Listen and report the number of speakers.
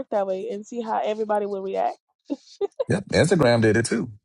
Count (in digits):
2